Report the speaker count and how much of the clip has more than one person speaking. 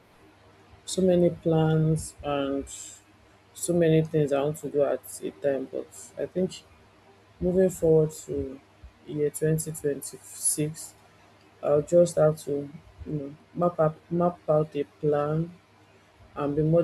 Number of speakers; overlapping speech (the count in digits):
1, no overlap